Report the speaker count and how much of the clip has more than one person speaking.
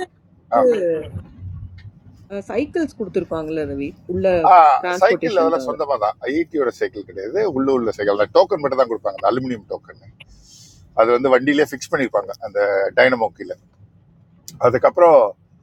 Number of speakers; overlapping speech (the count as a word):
two, about 5%